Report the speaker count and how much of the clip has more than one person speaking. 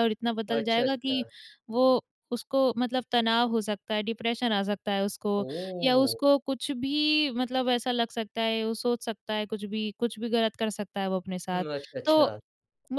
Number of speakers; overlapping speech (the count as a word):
two, about 12%